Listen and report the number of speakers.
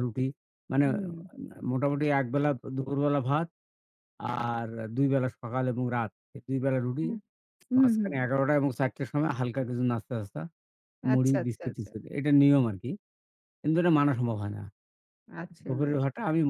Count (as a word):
two